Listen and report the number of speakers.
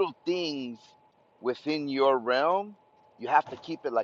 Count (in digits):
1